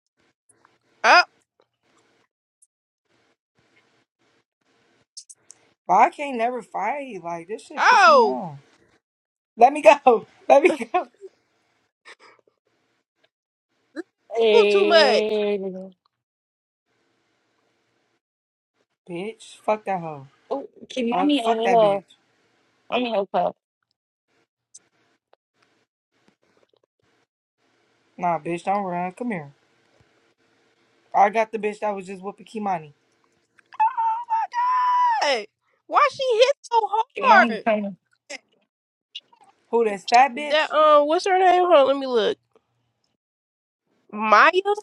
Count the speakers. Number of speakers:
3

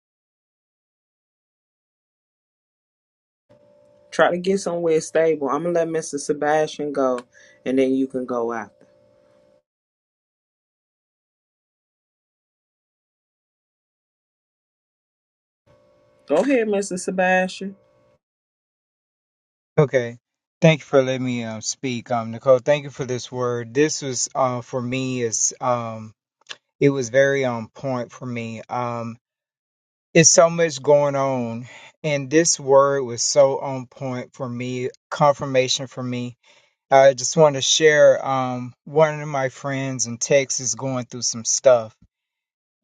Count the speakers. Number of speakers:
2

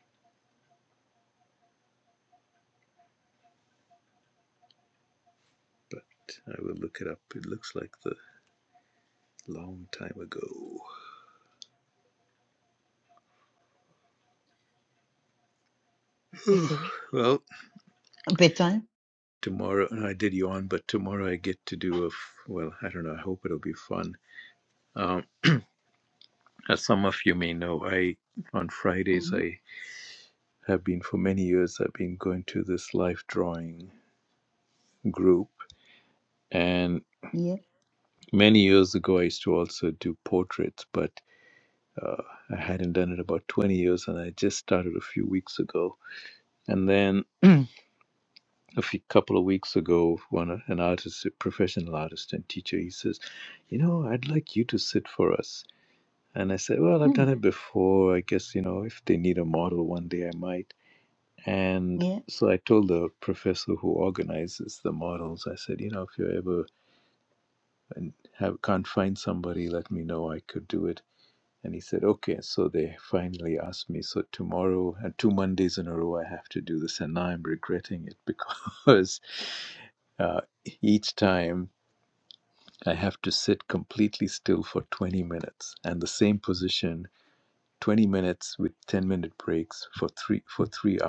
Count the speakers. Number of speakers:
2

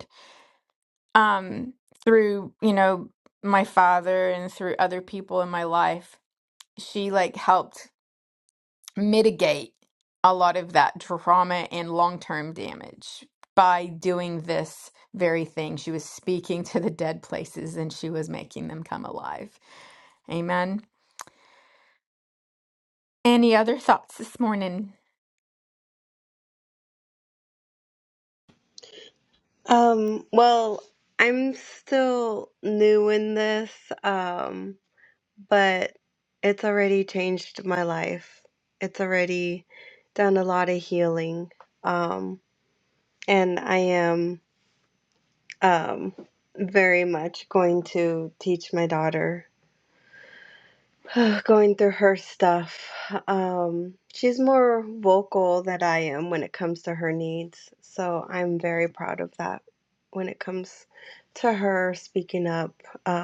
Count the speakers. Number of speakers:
2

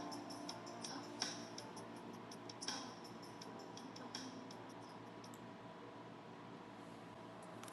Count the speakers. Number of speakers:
0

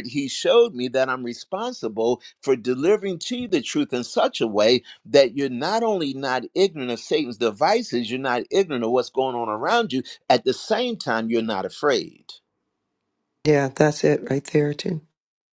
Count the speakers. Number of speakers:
2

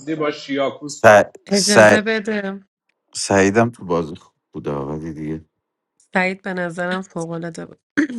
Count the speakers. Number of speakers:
3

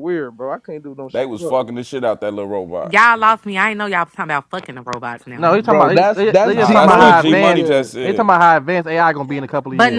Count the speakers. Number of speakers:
4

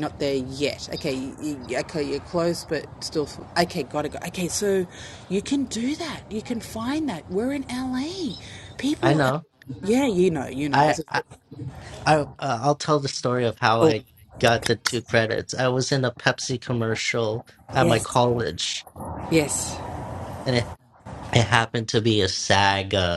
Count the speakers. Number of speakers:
2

